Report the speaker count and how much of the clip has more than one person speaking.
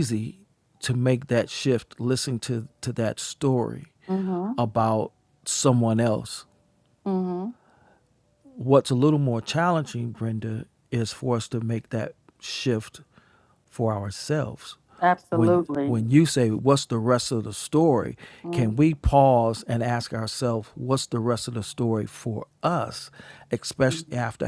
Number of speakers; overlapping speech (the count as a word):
two, about 3%